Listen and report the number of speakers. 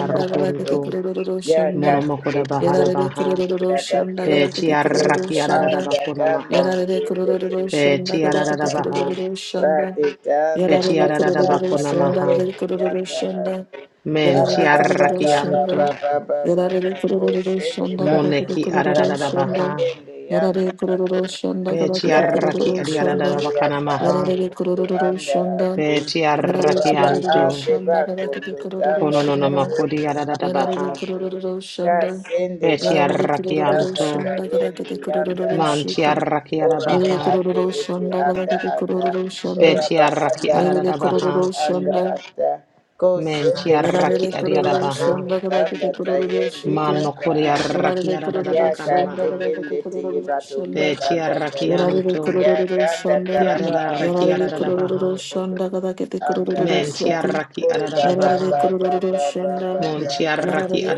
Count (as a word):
three